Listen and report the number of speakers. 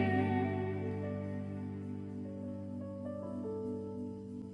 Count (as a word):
zero